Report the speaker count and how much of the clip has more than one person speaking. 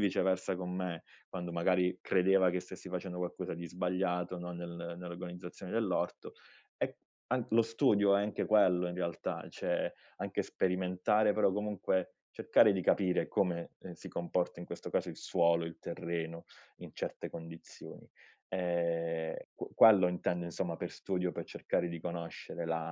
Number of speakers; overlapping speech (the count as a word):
one, no overlap